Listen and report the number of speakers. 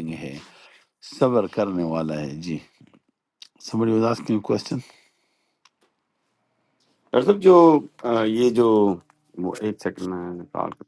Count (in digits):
2